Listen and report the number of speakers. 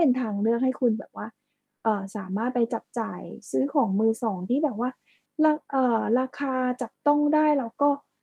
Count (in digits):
1